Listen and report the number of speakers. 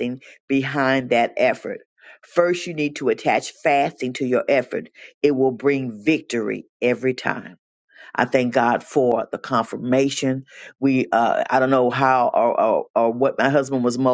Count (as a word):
one